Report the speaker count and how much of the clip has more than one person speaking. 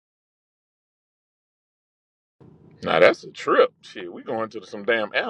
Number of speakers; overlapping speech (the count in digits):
1, no overlap